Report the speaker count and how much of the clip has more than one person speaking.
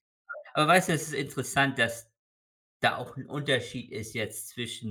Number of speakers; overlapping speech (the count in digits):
1, no overlap